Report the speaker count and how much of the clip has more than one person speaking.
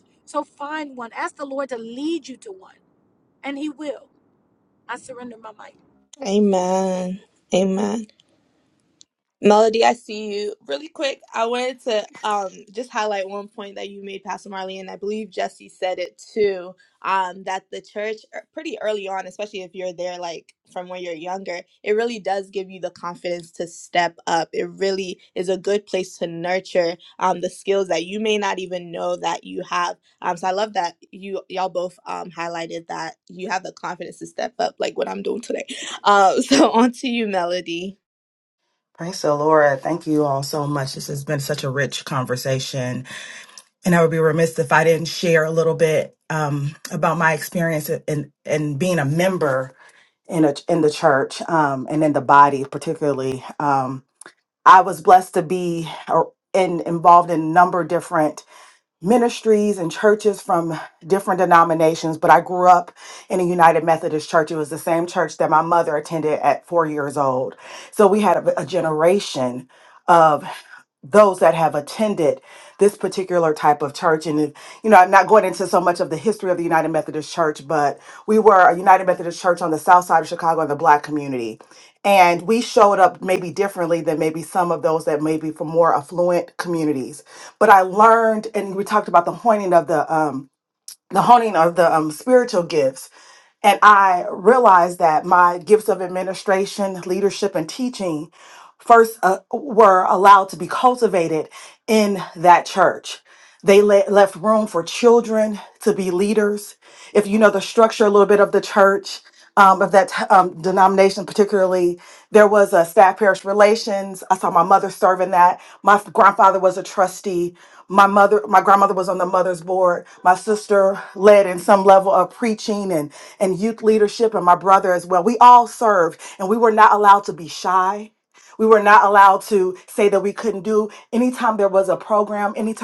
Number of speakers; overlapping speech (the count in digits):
3, no overlap